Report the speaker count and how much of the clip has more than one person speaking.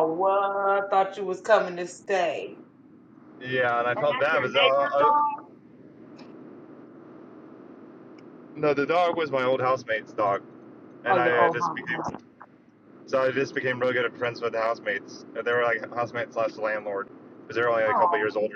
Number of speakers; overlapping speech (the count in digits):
2, about 13%